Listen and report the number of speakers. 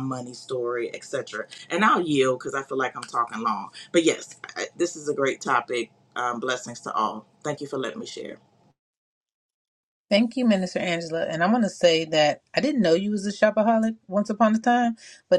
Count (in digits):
2